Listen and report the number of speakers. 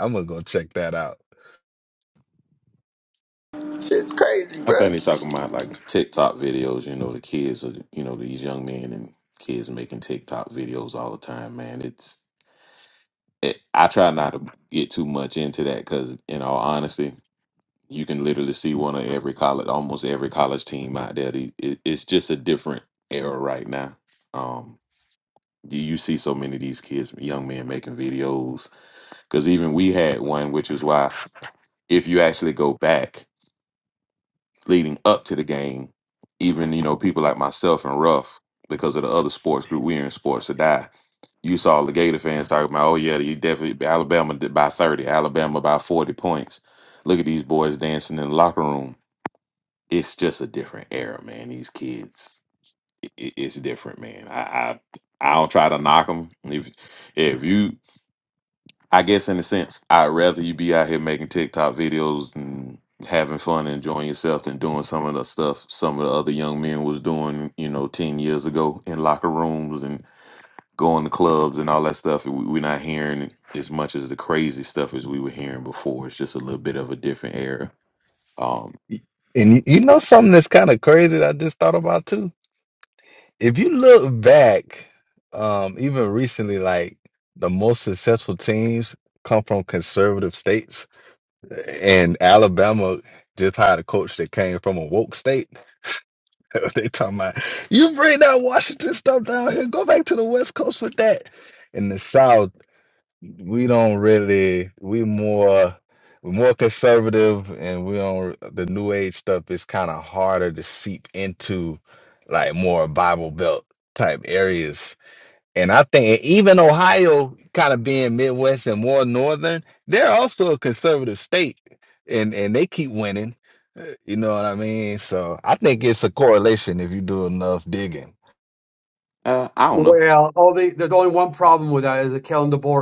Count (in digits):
4